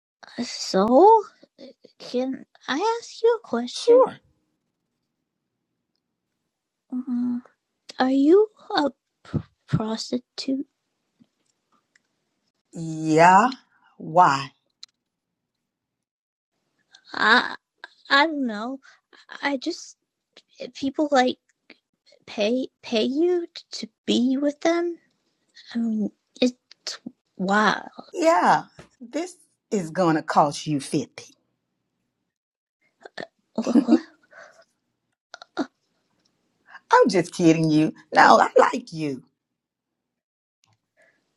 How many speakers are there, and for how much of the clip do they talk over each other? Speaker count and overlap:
2, about 1%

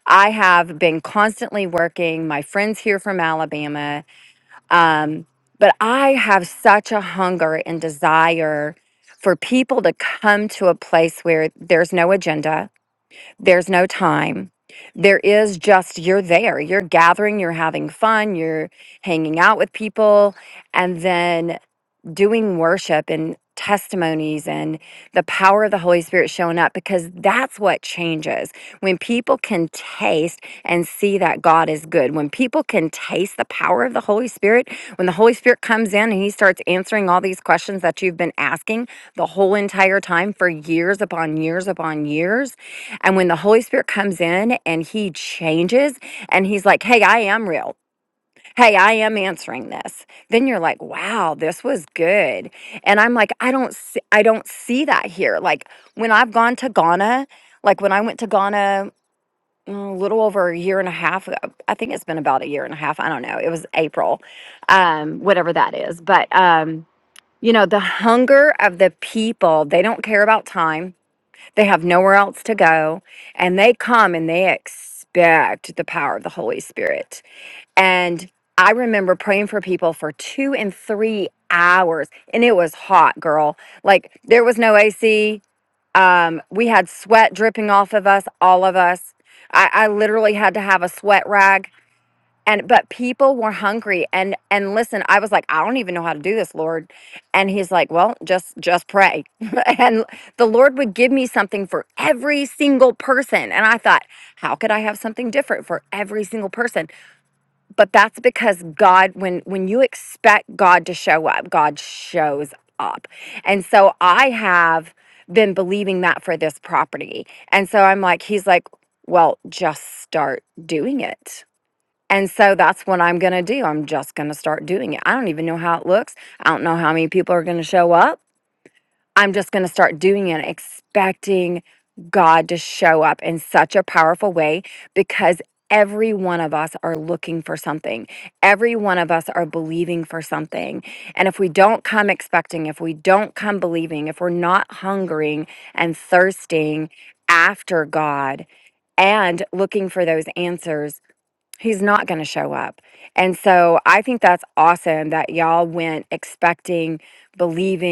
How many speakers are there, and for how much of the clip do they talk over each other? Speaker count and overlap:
1, no overlap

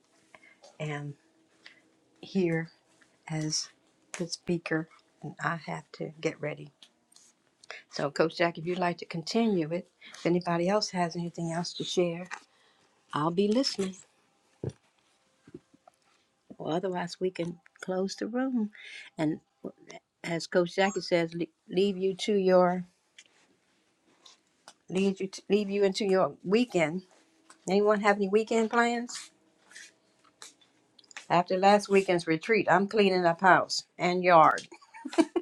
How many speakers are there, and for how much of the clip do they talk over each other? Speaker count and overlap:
1, no overlap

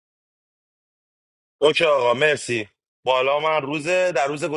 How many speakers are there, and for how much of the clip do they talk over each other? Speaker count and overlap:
1, no overlap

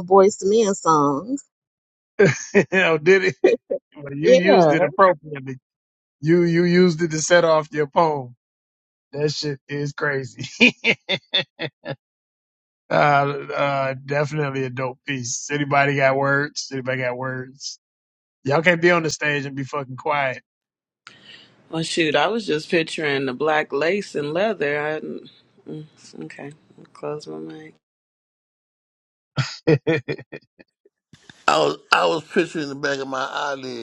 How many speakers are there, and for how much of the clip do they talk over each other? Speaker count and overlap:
4, about 2%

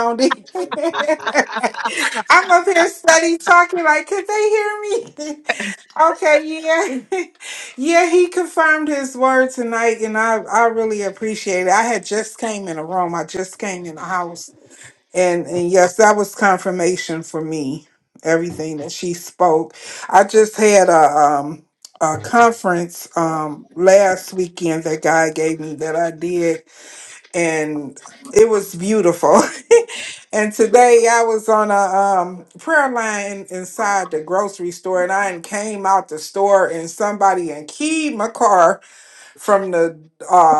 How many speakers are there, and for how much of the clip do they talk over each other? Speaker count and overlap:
1, no overlap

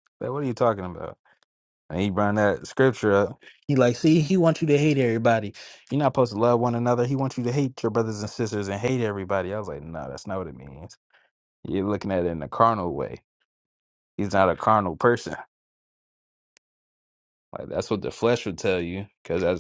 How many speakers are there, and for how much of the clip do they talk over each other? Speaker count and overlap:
1, no overlap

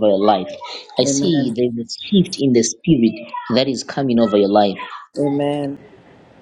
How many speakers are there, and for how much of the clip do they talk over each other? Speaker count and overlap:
2, about 8%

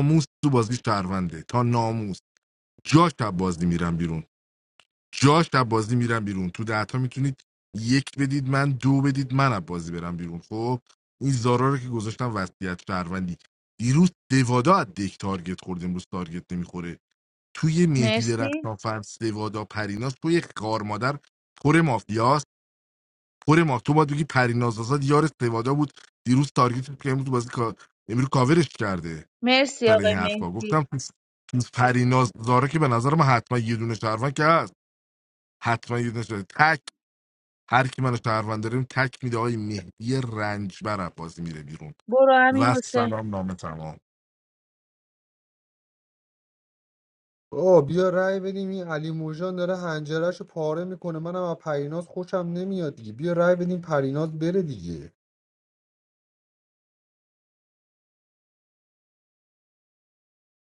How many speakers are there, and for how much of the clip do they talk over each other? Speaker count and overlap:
3, about 4%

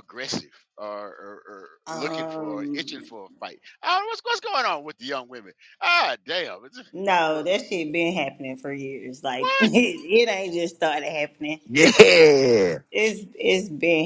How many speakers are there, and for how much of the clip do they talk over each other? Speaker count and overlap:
3, about 11%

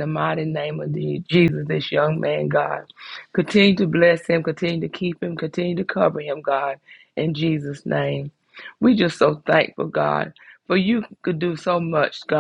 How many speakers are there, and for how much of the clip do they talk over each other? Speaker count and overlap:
1, no overlap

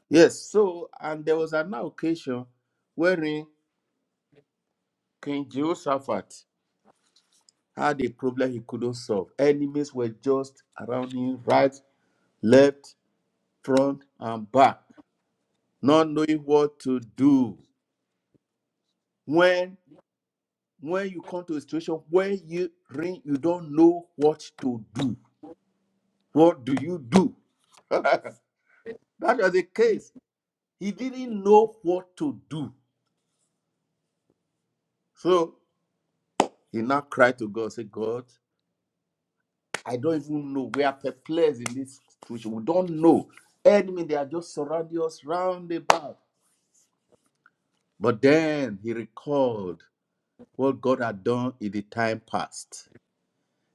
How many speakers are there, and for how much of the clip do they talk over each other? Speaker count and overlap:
1, no overlap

